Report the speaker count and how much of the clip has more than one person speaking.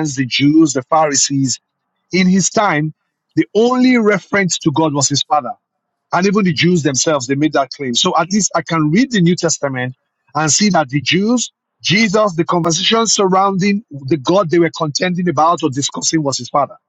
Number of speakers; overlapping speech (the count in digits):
1, no overlap